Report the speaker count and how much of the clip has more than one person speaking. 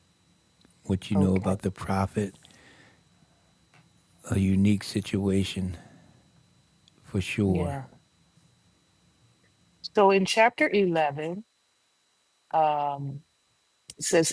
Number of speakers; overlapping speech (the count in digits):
2, about 5%